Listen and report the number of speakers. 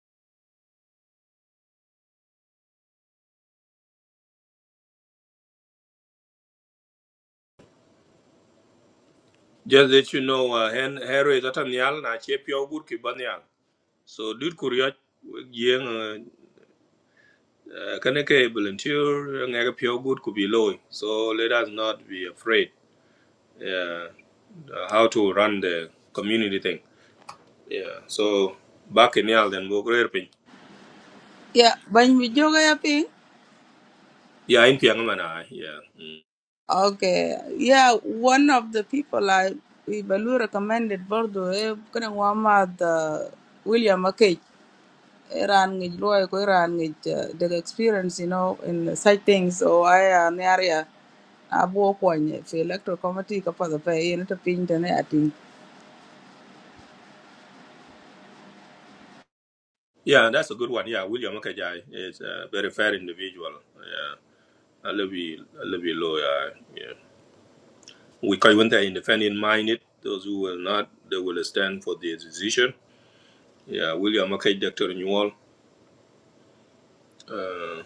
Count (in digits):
2